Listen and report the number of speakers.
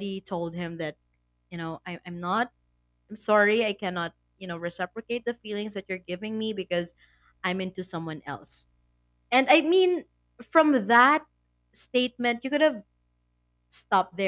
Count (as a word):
one